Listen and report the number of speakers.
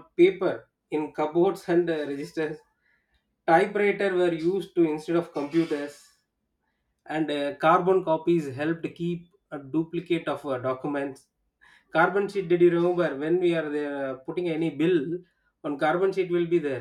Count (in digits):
1